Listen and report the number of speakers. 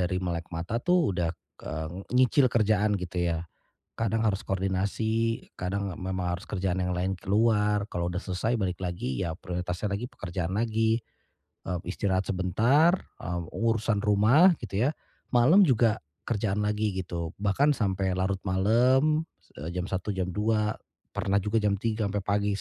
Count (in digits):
1